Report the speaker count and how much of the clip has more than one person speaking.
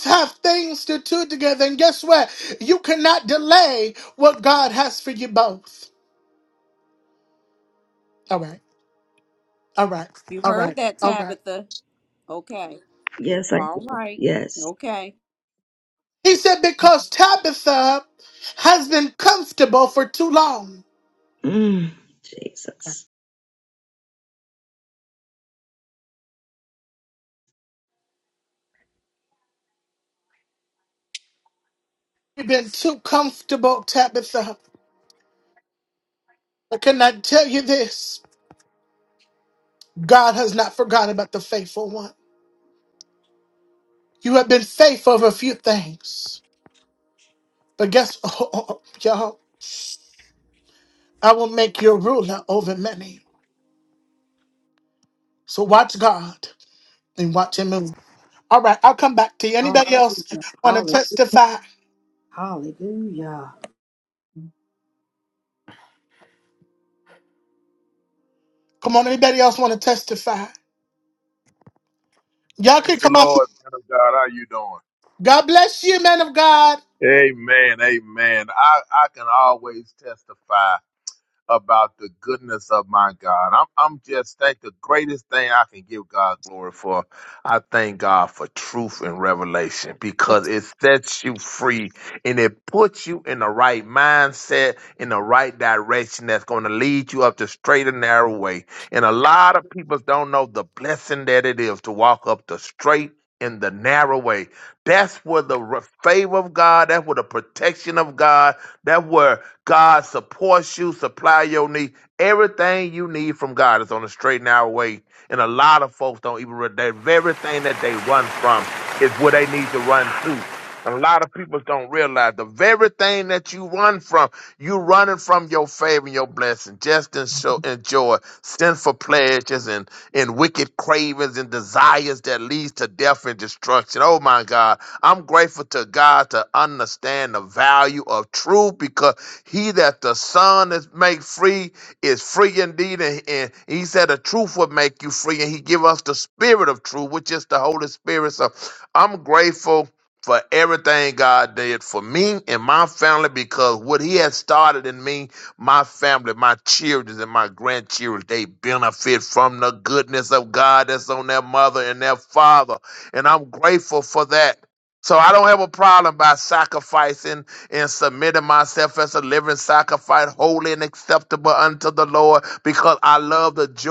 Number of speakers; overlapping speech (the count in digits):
5, about 2%